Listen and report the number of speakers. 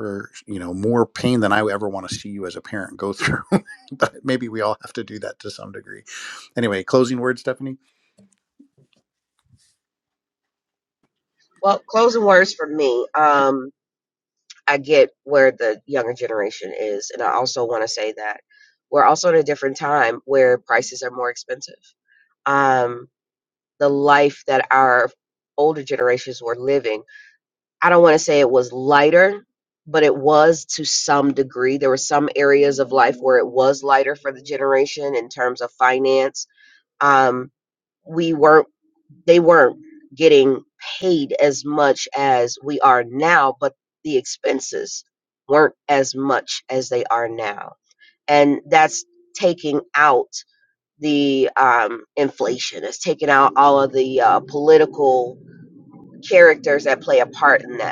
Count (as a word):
two